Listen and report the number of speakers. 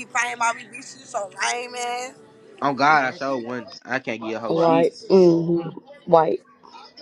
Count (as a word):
three